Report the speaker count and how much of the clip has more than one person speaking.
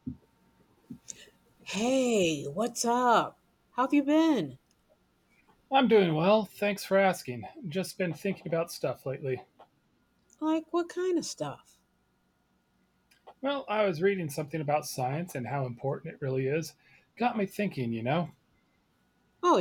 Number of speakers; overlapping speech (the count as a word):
two, no overlap